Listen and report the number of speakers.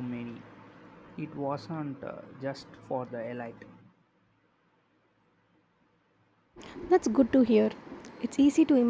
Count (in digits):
2